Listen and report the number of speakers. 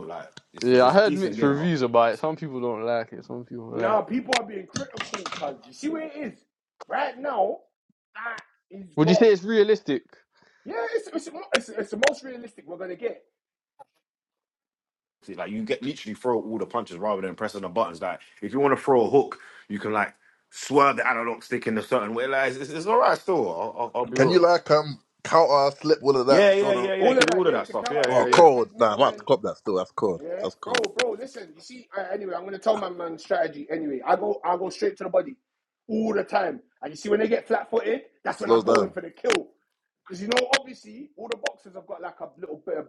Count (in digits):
4